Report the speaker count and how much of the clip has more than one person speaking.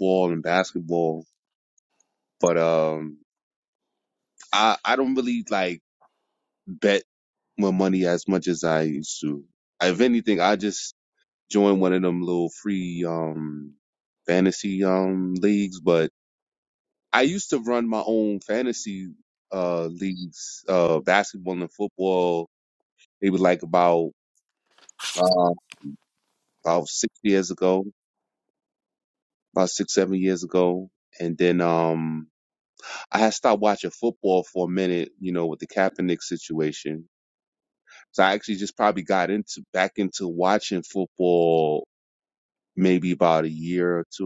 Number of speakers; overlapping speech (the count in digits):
1, no overlap